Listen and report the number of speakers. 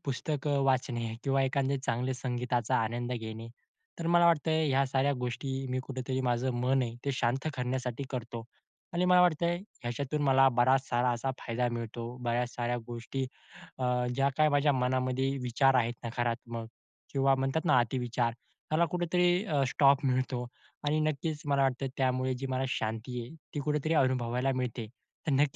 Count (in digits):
1